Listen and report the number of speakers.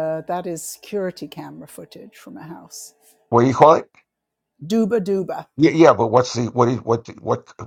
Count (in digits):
2